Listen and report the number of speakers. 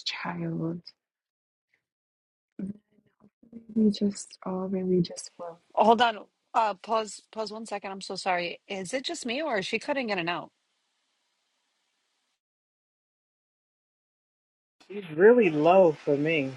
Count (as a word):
three